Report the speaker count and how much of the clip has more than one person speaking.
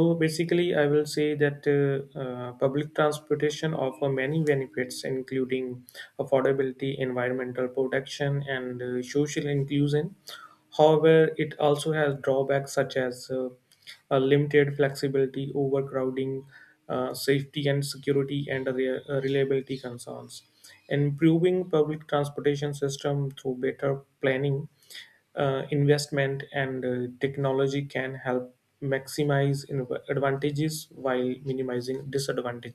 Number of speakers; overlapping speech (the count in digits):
1, no overlap